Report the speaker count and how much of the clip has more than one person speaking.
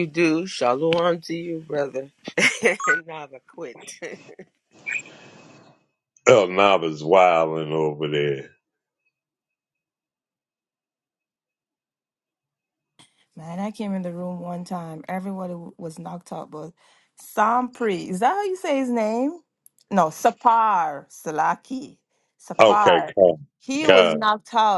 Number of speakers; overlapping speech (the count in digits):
3, about 4%